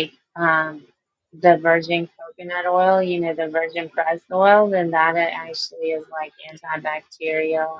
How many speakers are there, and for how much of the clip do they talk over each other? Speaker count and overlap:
one, no overlap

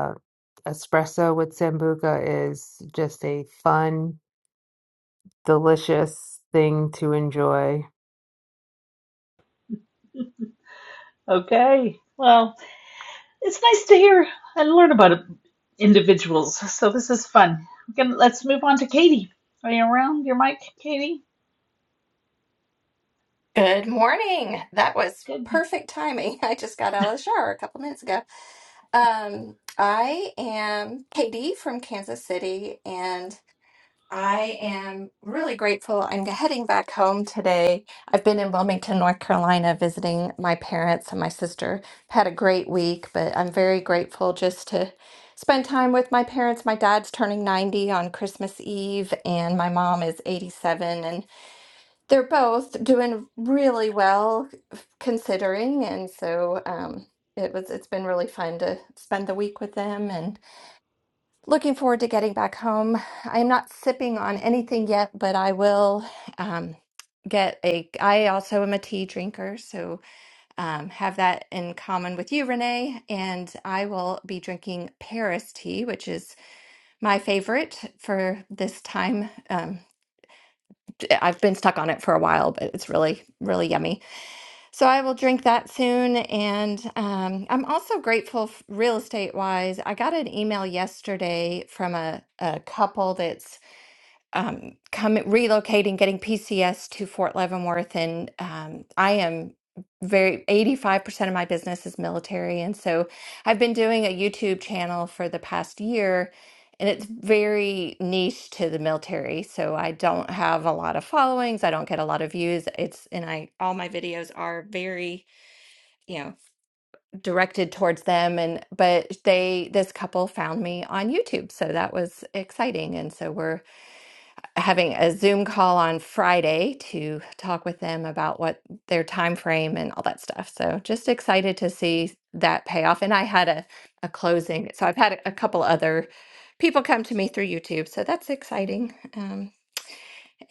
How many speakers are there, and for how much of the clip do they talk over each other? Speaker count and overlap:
three, no overlap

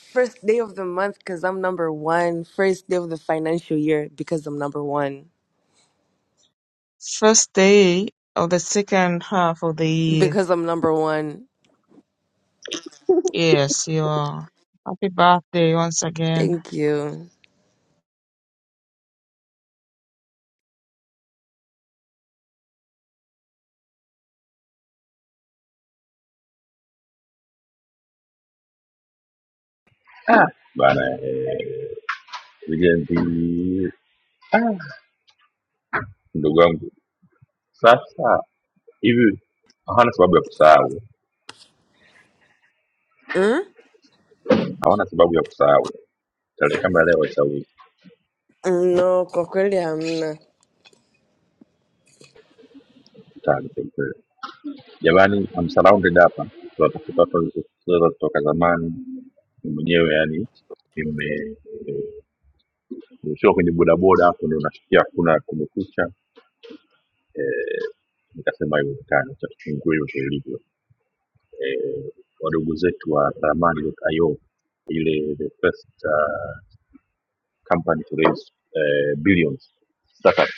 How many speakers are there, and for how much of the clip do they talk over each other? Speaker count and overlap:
three, under 1%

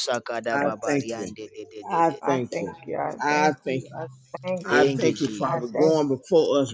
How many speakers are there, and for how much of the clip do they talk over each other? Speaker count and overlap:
three, about 54%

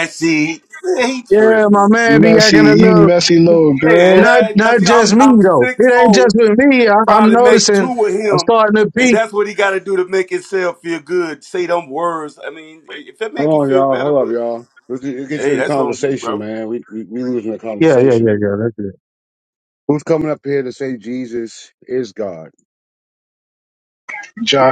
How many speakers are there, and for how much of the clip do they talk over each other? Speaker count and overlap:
four, about 31%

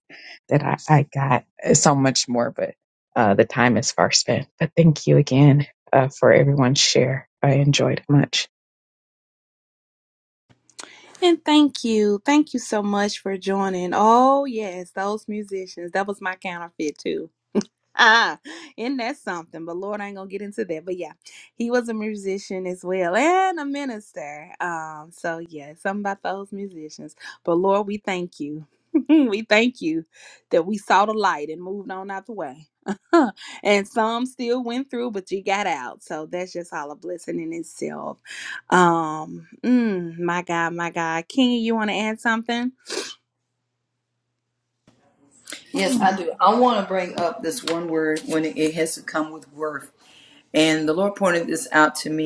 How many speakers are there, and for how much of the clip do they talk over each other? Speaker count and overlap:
three, no overlap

